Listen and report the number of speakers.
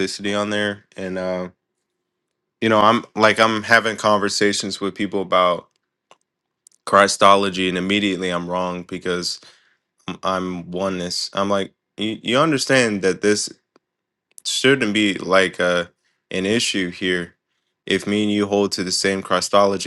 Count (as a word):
one